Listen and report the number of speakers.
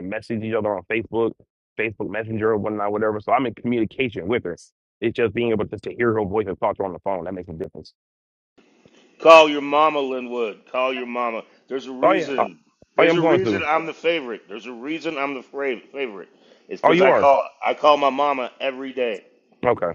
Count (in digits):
2